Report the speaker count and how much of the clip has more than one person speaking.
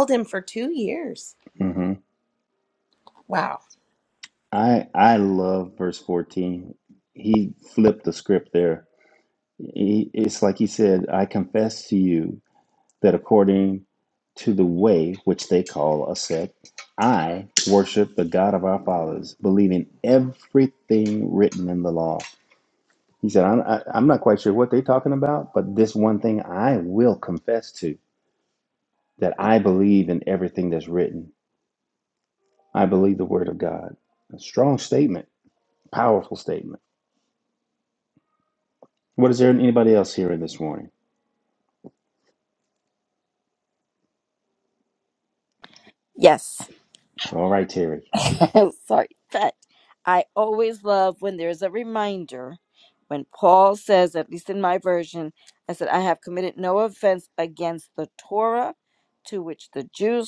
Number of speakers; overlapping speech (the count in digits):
3, no overlap